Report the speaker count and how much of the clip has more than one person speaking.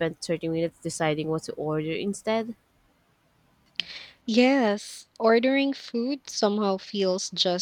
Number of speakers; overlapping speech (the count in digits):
2, no overlap